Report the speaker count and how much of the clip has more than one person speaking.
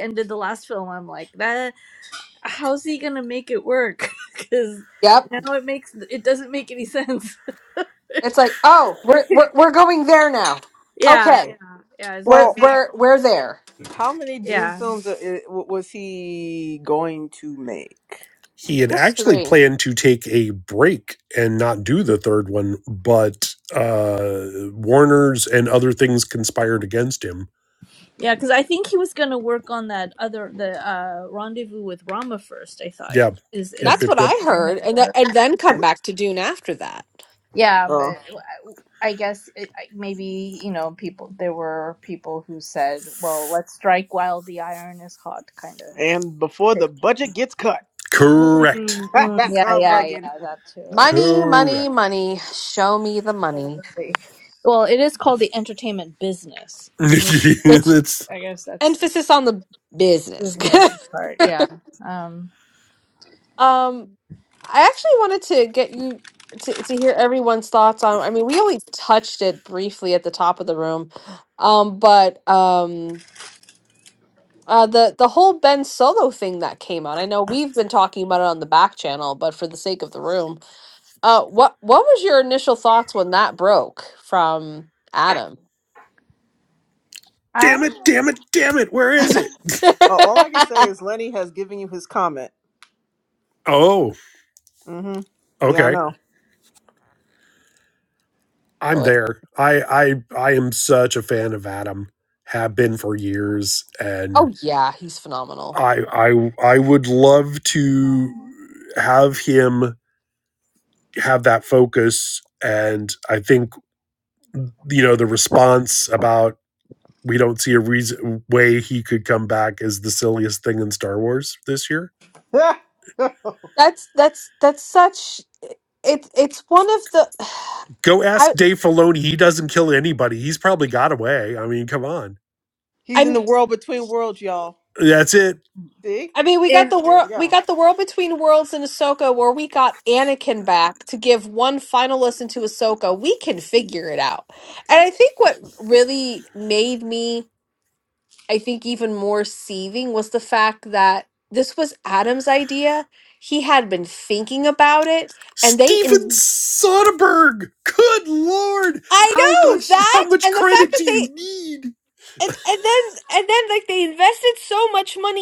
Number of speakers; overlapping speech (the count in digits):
4, about 7%